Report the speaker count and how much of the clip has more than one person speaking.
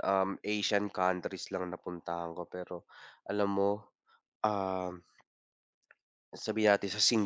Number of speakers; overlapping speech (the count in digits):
1, no overlap